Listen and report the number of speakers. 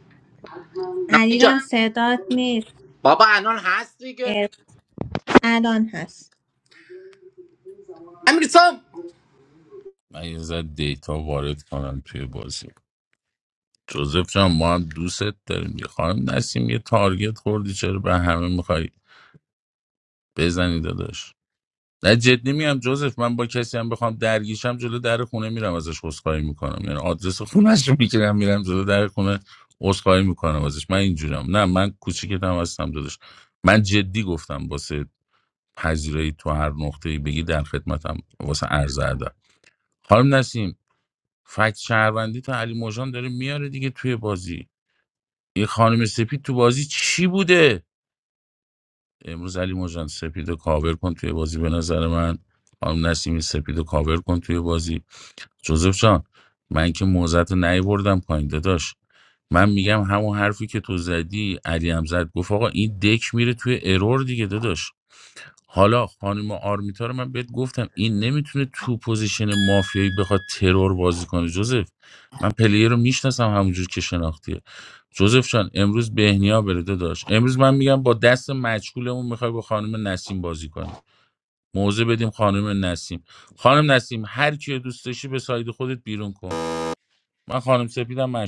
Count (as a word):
three